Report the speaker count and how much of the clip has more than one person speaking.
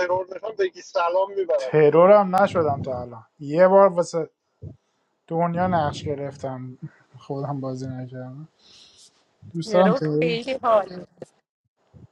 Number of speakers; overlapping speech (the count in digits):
3, about 7%